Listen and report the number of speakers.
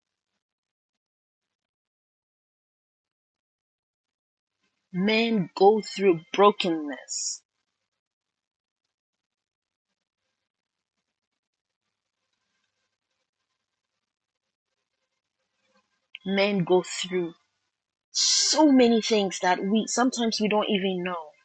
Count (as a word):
one